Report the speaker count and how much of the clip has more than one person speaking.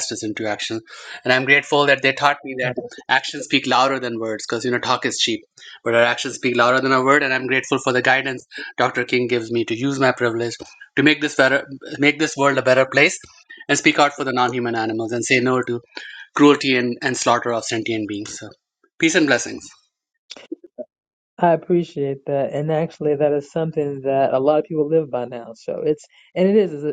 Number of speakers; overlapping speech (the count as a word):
two, no overlap